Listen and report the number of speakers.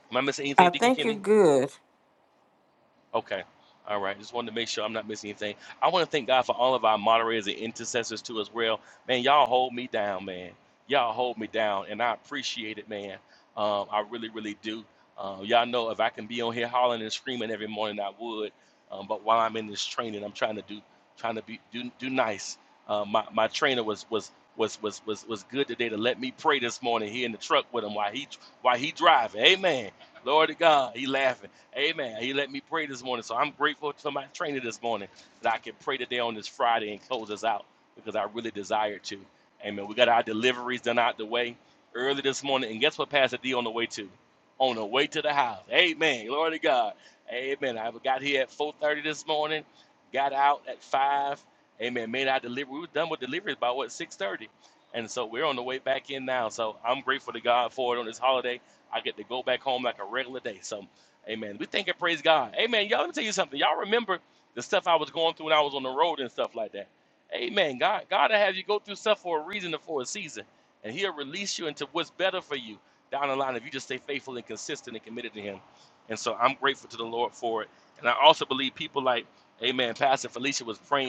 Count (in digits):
2